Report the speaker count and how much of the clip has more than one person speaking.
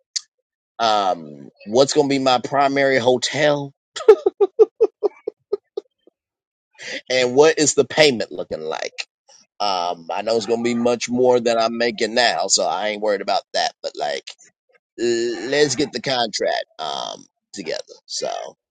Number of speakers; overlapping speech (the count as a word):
one, no overlap